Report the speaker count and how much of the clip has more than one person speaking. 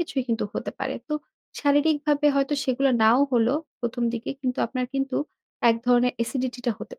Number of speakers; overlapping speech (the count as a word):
one, no overlap